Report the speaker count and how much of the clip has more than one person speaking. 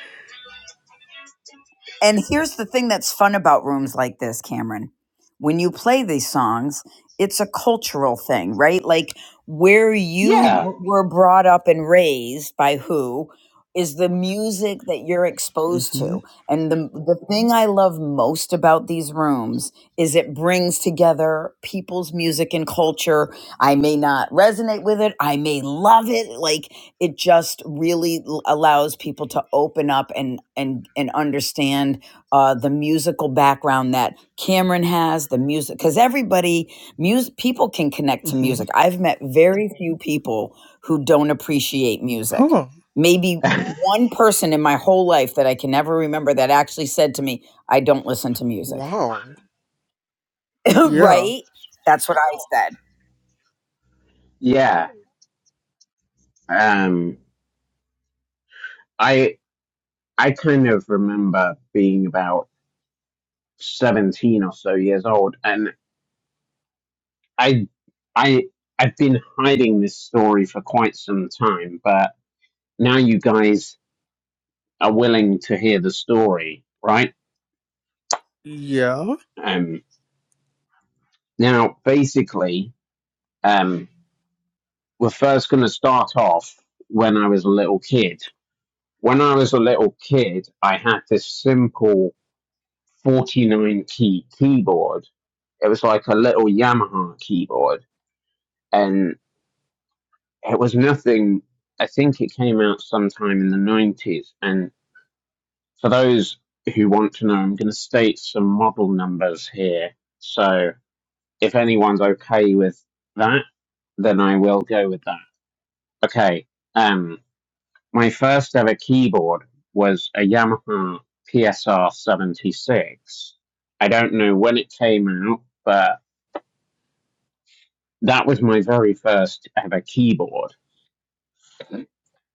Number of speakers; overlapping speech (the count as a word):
three, about 2%